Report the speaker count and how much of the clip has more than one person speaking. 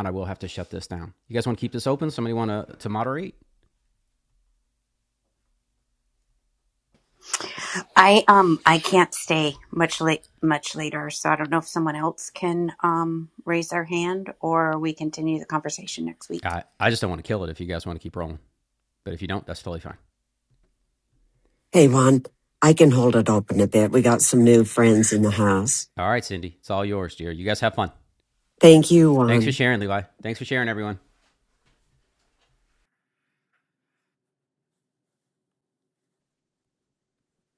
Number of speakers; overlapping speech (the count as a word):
three, about 1%